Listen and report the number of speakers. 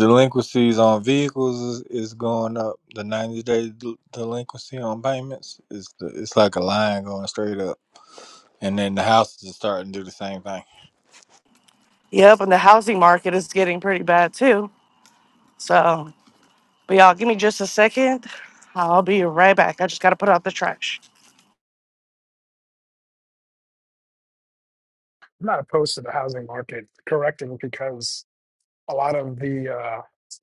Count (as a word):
three